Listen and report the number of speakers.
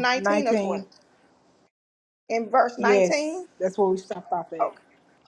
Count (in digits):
2